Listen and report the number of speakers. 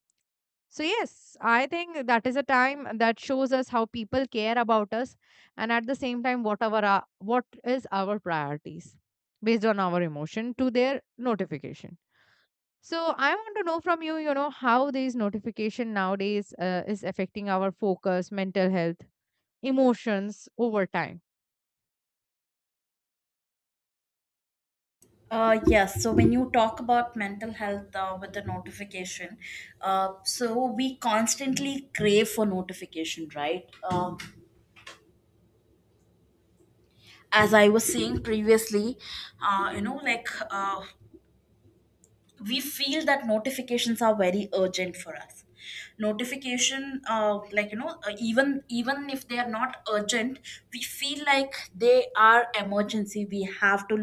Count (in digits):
2